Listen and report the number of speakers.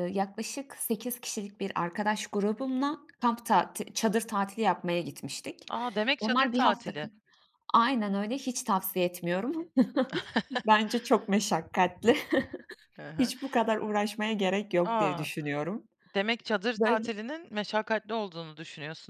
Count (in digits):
2